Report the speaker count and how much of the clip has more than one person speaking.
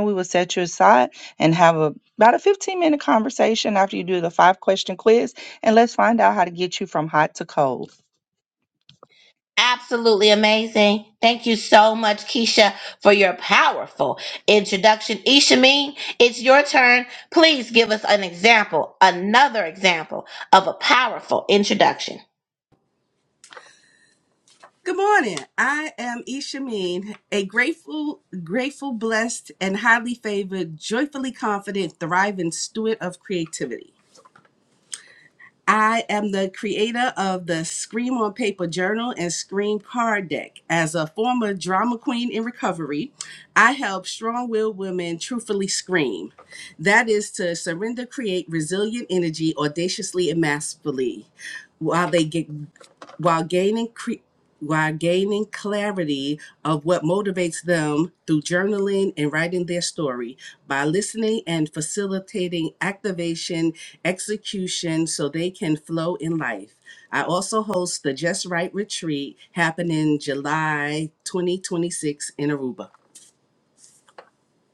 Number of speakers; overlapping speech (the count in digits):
3, no overlap